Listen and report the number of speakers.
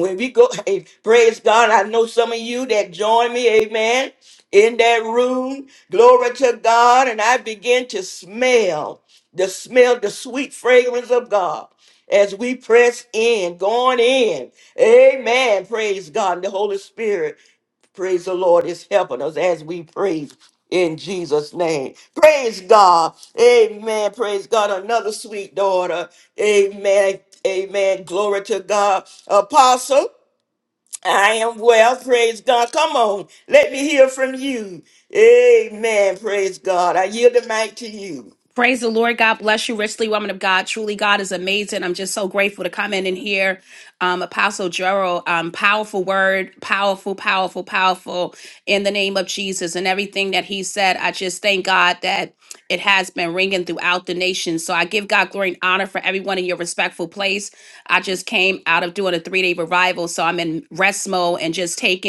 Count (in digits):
2